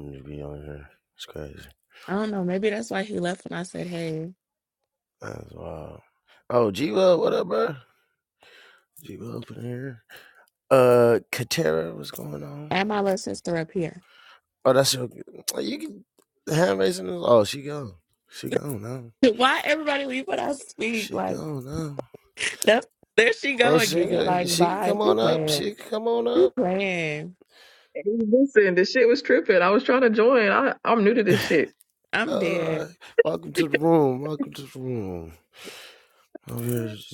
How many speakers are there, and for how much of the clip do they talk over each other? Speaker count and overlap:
3, about 9%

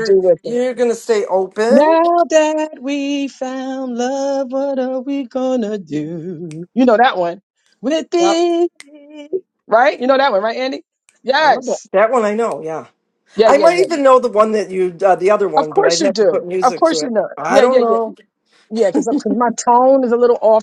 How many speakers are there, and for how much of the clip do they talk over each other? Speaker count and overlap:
2, about 21%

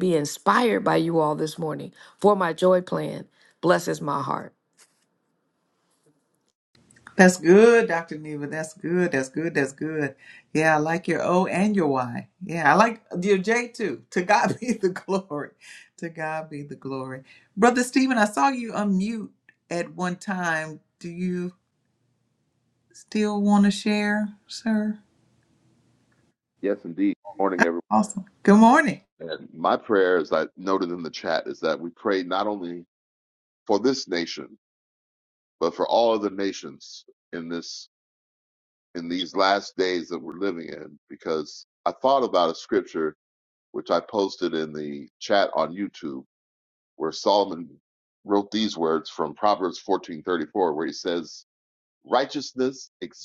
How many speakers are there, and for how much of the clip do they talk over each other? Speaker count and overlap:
3, no overlap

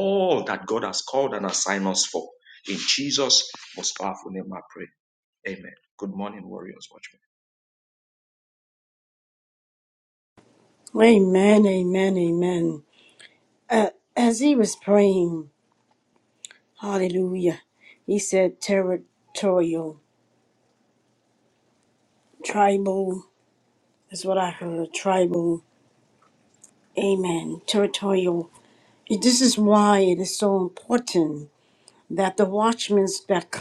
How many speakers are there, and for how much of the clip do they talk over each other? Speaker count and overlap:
2, no overlap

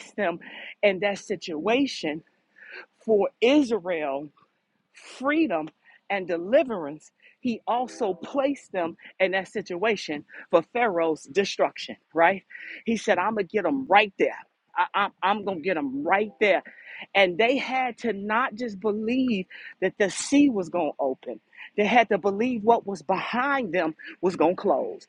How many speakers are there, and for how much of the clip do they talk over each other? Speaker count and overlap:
1, no overlap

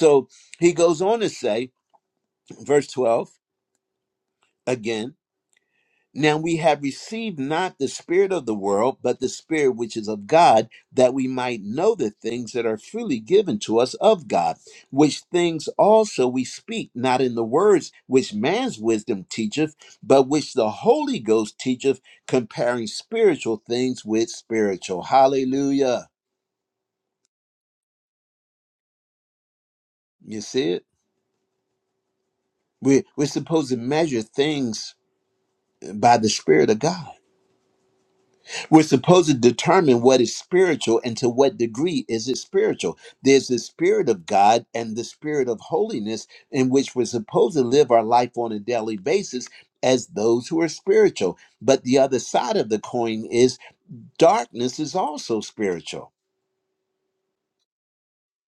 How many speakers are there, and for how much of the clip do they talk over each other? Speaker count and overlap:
1, no overlap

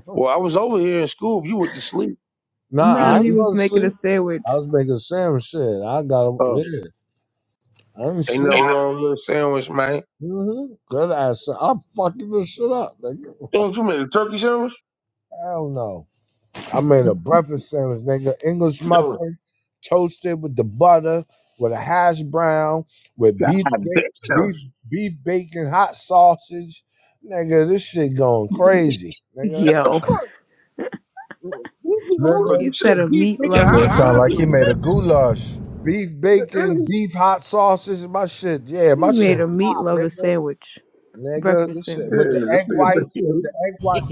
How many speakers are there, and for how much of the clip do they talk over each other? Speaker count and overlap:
4, about 22%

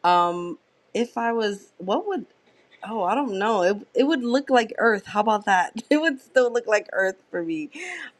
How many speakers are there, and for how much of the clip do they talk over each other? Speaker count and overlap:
1, no overlap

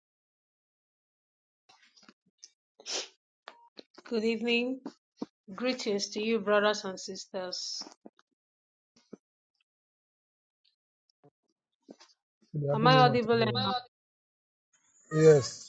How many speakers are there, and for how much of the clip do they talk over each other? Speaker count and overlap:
2, about 3%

